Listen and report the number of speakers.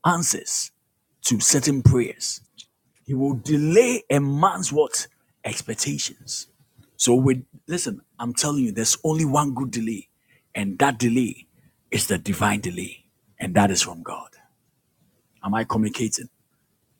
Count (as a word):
one